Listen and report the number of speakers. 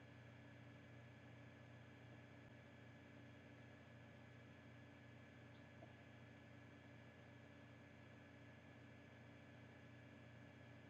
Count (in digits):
0